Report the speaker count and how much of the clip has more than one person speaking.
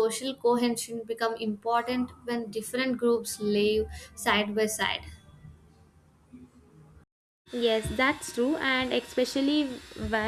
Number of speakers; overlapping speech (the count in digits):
2, no overlap